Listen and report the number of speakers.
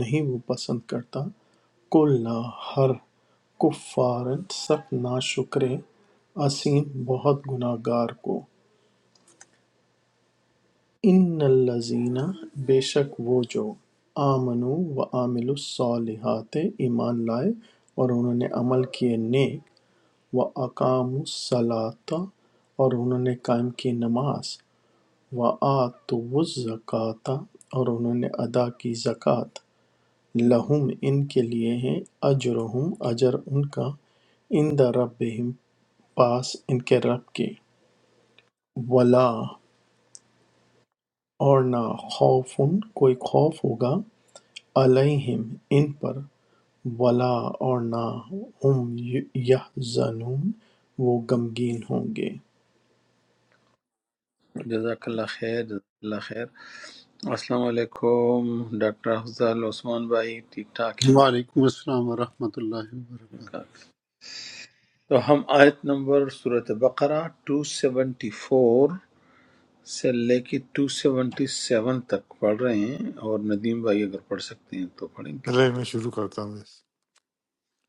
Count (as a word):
four